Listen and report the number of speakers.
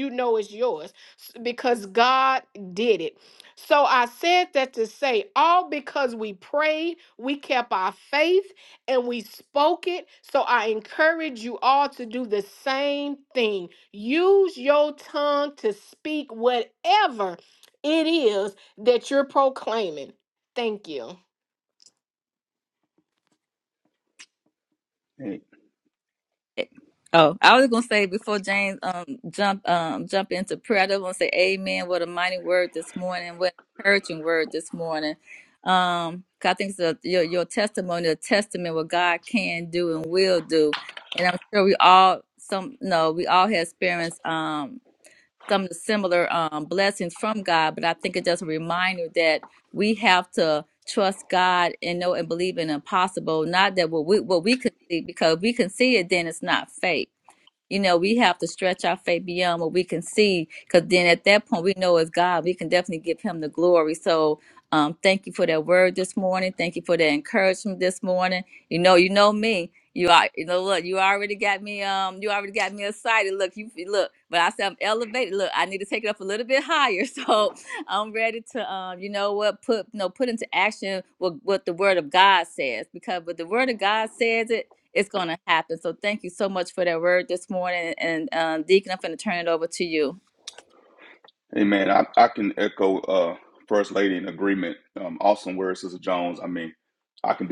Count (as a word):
three